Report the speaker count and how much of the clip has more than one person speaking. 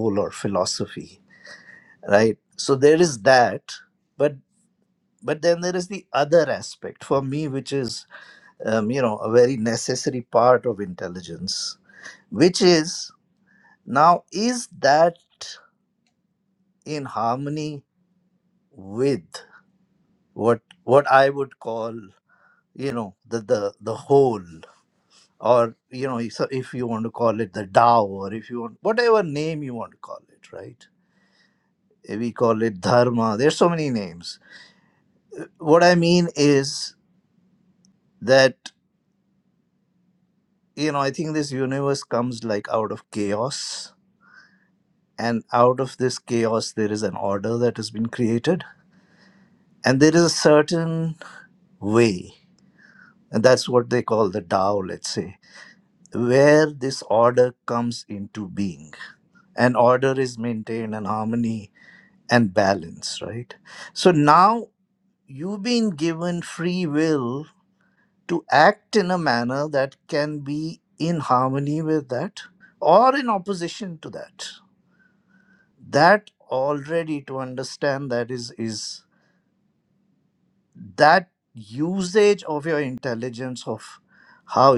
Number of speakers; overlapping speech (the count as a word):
one, no overlap